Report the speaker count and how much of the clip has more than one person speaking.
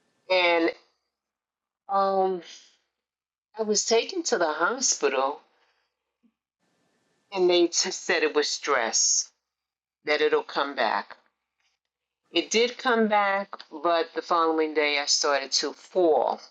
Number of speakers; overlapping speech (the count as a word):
one, no overlap